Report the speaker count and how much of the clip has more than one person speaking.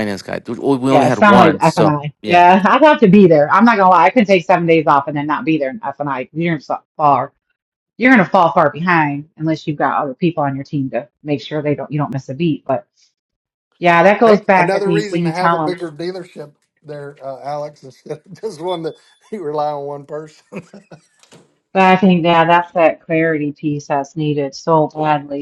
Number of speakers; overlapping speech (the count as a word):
three, about 11%